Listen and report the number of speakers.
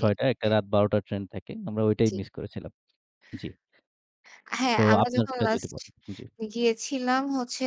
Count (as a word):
two